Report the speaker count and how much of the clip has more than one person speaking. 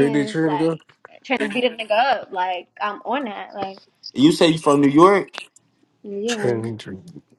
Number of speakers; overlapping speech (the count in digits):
3, about 15%